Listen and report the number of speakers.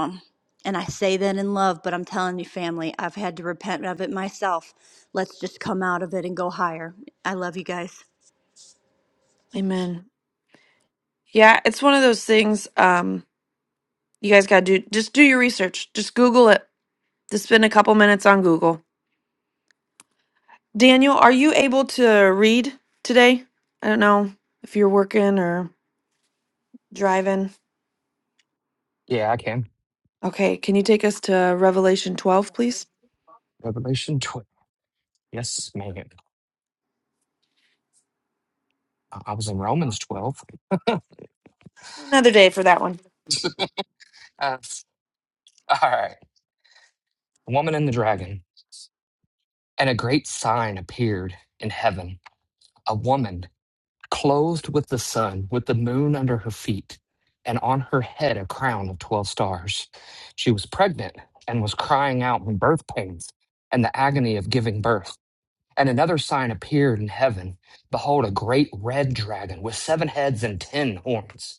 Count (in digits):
3